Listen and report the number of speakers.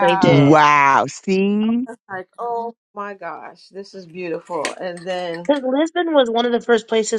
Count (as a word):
three